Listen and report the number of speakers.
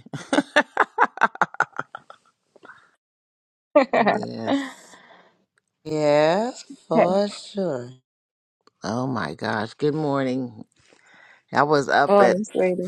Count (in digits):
3